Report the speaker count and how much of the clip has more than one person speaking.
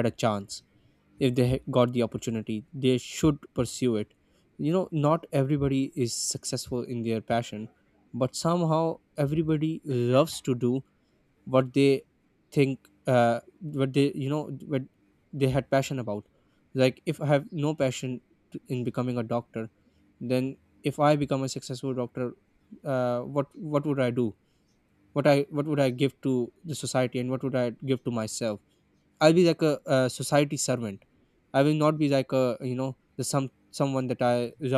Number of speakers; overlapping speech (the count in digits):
1, no overlap